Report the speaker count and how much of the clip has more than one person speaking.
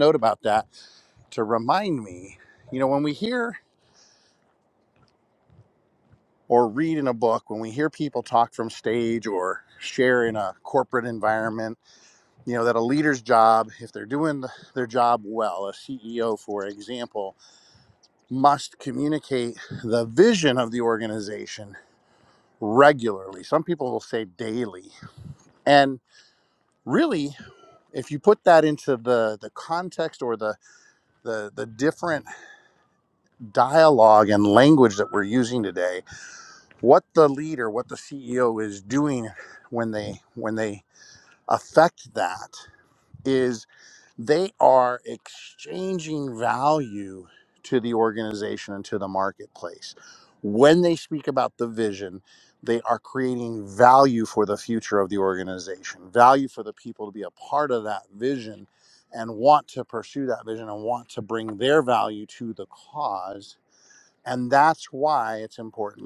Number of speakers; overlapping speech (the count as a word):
one, no overlap